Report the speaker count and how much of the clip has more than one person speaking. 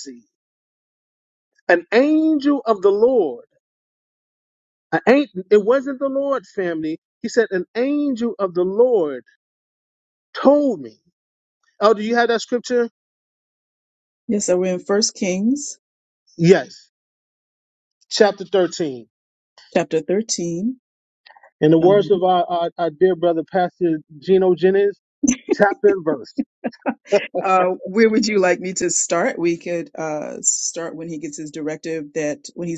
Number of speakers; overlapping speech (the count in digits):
2, about 1%